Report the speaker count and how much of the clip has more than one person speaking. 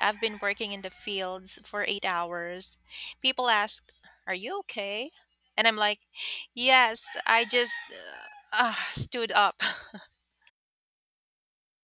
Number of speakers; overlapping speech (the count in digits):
1, no overlap